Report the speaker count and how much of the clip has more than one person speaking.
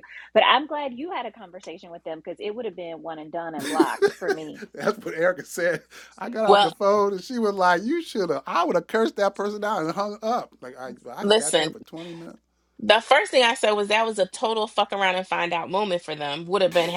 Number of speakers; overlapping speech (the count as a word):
three, about 5%